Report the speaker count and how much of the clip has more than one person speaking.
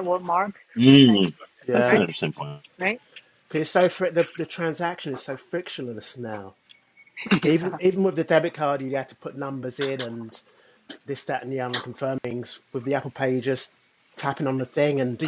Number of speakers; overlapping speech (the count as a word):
three, about 8%